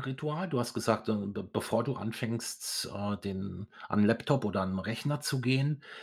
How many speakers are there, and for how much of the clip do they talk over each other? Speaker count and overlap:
one, no overlap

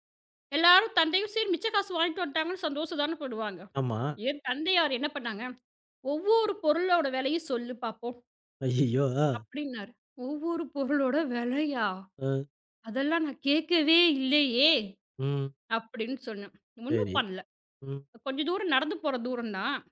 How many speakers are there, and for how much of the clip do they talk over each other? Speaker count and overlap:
two, about 2%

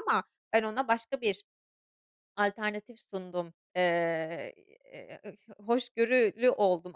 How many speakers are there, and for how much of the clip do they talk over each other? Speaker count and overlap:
one, no overlap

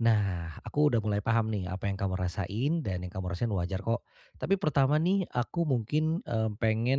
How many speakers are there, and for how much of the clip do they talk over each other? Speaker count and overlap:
one, no overlap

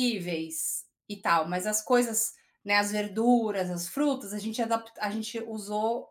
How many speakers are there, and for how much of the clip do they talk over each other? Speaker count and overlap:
one, no overlap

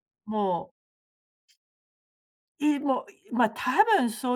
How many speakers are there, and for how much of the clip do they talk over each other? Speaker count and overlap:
one, no overlap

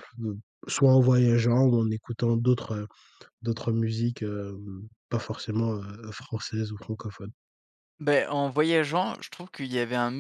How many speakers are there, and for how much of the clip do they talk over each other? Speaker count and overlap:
two, no overlap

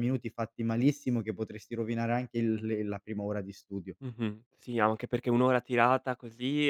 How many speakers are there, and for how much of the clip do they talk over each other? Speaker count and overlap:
two, no overlap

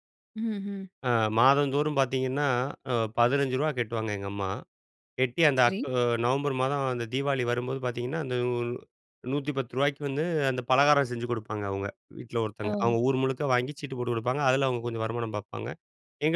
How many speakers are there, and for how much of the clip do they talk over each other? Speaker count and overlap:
two, about 4%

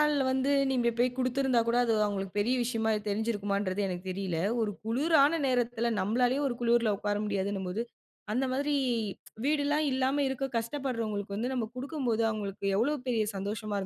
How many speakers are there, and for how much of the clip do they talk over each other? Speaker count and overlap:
one, no overlap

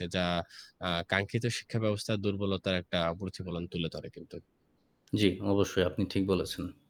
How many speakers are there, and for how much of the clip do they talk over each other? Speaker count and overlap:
two, no overlap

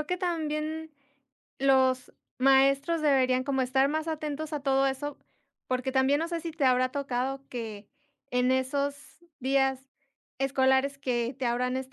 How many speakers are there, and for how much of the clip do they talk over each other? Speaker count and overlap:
one, no overlap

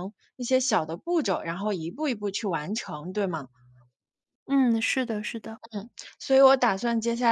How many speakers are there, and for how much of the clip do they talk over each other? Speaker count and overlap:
two, no overlap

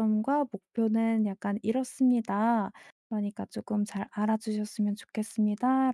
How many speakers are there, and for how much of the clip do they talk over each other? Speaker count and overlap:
one, no overlap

